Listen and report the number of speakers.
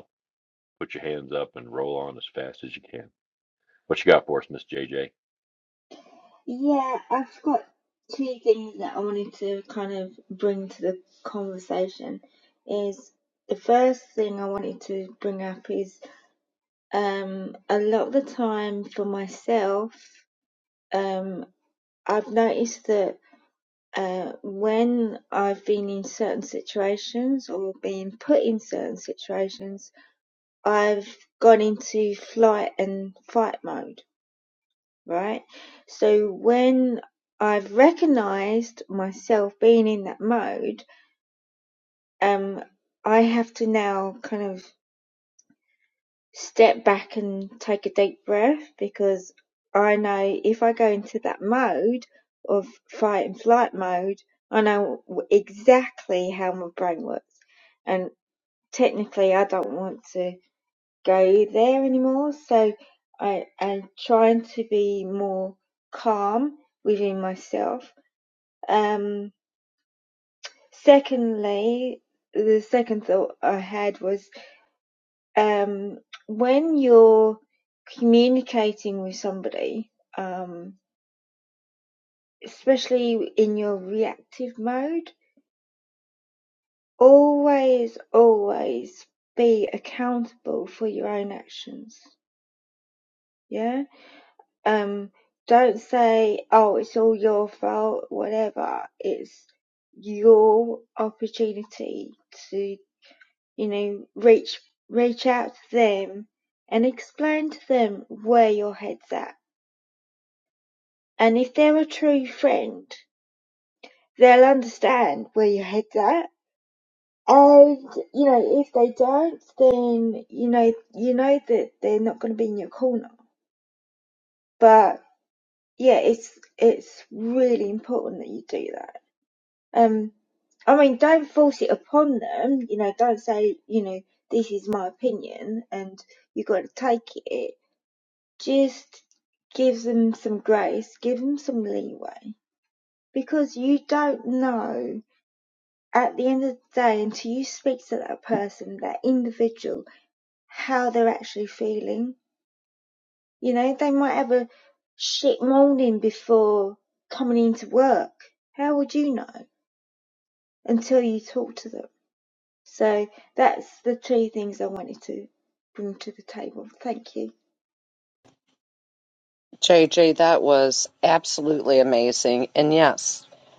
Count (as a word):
three